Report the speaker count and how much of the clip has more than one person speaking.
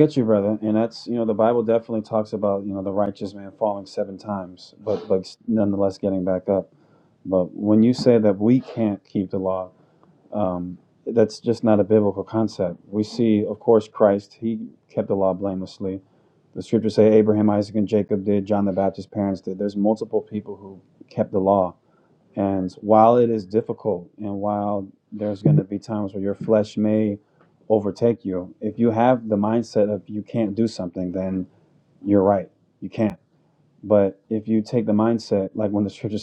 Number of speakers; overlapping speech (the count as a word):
one, no overlap